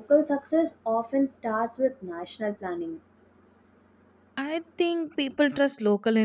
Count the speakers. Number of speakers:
2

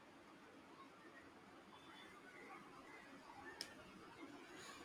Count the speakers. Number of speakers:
0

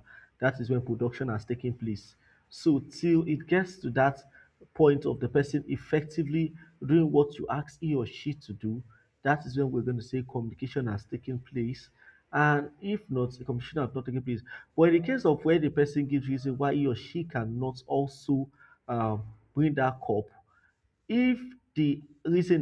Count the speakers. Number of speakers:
1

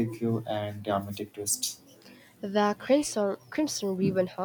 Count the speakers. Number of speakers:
2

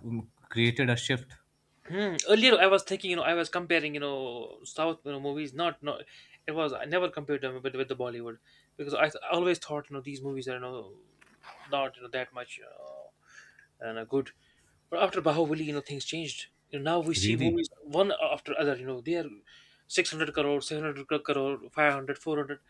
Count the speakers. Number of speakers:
2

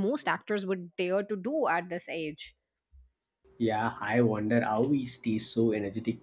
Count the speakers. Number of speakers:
2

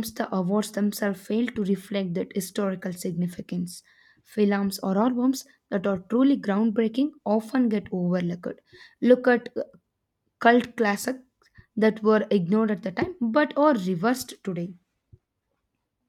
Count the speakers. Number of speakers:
1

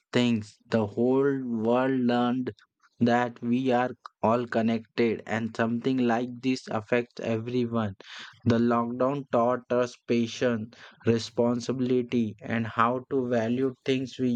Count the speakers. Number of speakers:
1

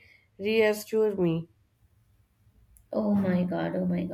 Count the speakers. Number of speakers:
2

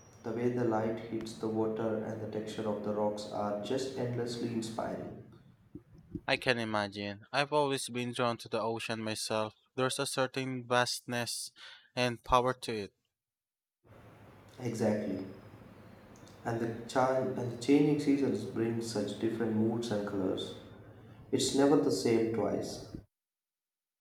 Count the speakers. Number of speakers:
2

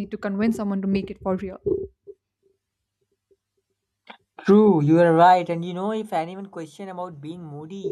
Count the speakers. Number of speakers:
2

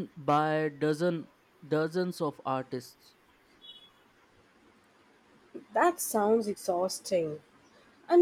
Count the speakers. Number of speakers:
2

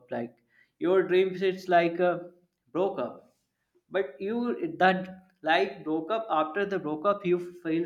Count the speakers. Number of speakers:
1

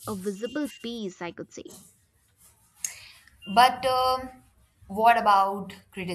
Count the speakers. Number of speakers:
2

